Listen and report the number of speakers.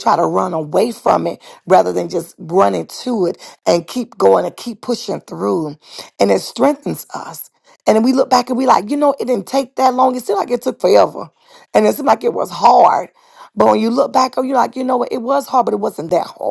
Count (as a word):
one